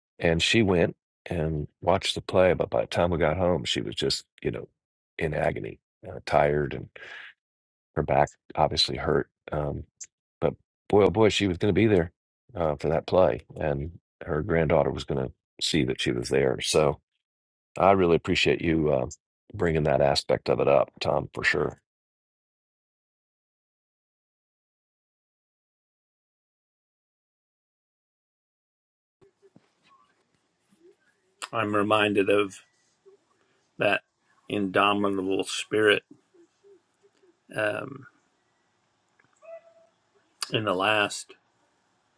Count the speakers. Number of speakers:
2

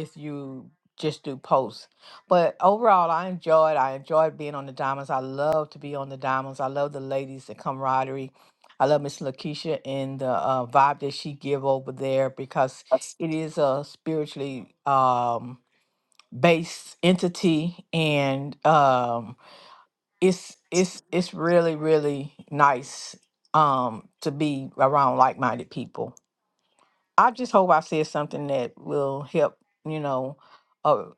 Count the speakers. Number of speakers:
1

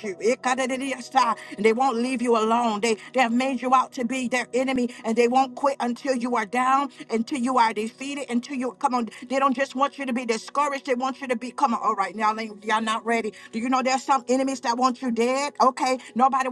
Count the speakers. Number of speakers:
1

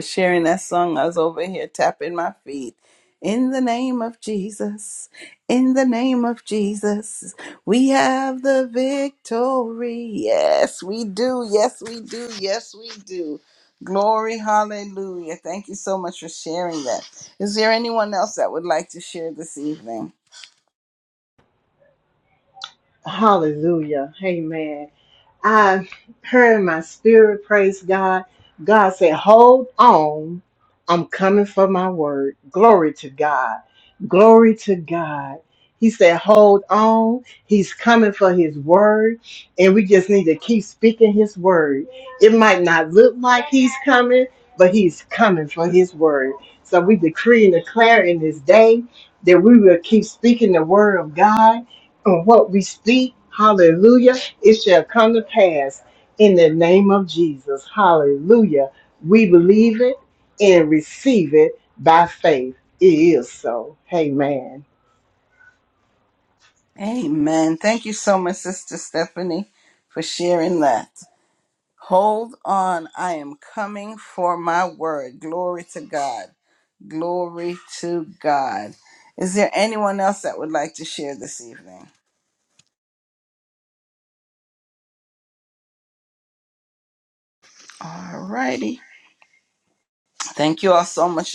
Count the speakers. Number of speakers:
2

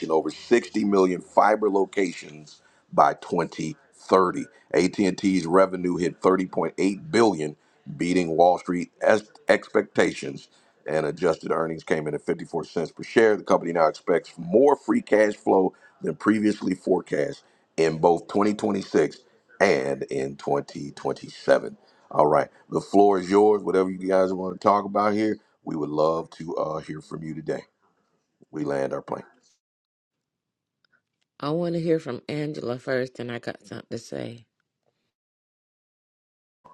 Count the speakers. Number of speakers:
2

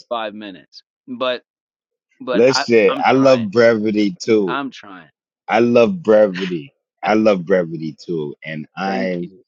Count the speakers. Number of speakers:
2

